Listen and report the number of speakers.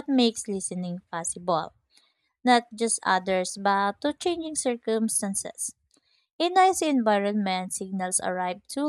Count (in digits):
1